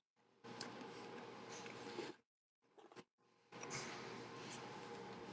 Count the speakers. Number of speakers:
0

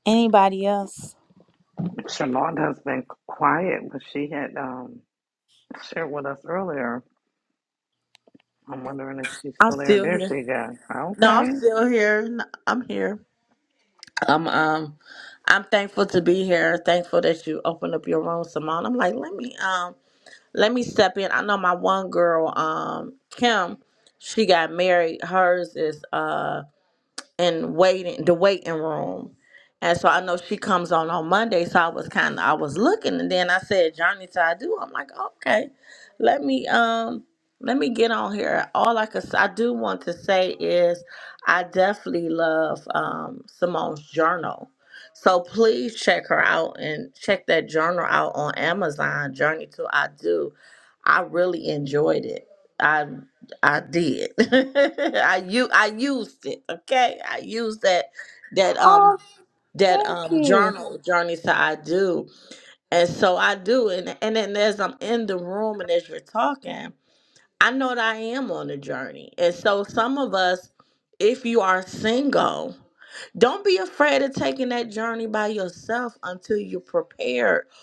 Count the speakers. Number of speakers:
3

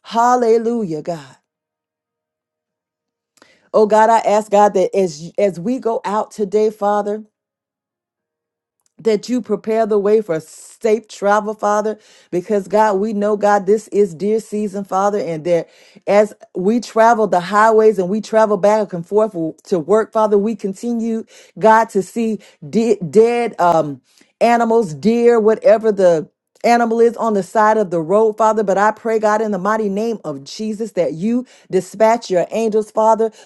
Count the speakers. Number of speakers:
1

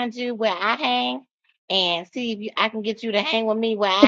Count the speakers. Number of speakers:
1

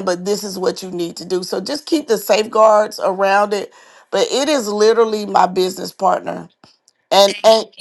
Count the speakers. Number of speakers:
1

